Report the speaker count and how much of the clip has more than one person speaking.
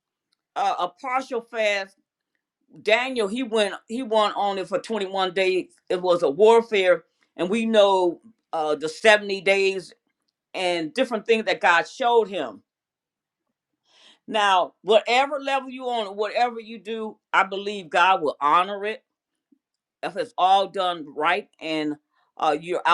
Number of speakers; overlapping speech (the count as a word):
one, no overlap